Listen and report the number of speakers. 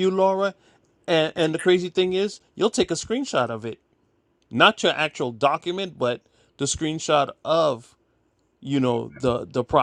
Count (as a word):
one